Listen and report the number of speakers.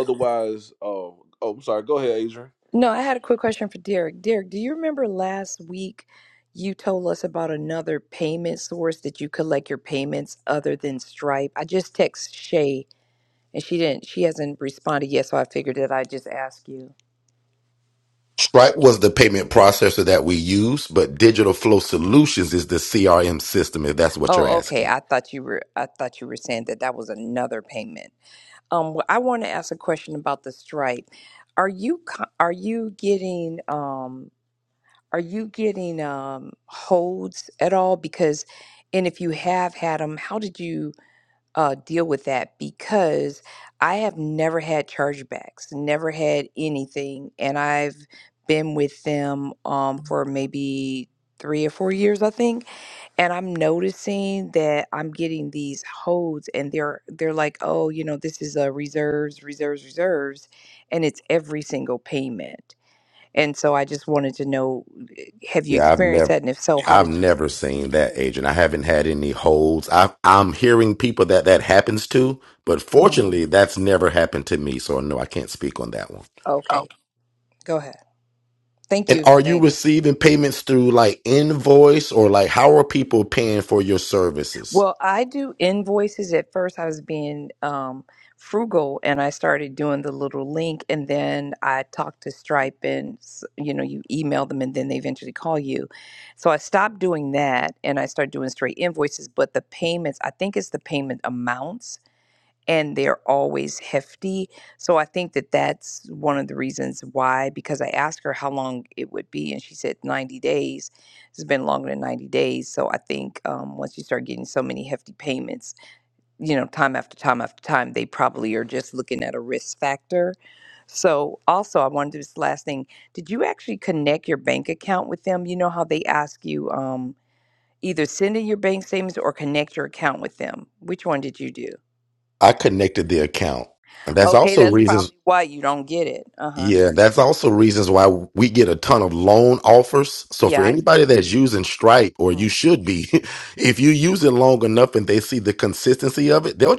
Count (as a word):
three